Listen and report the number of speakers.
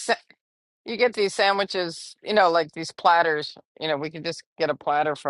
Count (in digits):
1